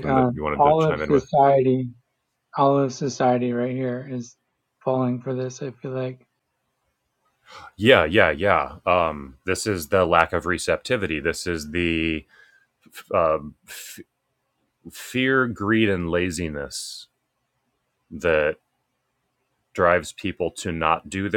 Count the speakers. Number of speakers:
two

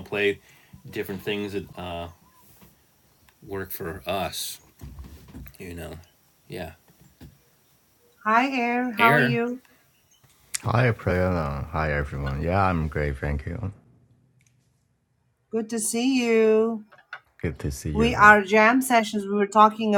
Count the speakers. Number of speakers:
three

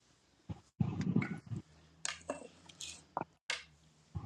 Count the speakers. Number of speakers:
zero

